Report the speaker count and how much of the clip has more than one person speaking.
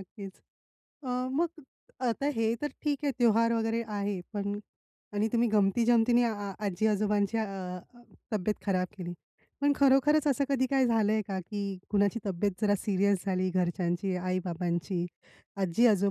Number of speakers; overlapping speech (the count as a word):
one, no overlap